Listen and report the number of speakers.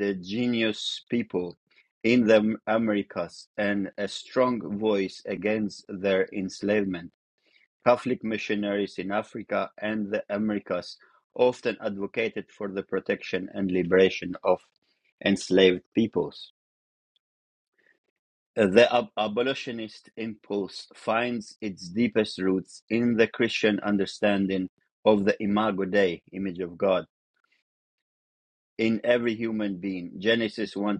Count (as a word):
one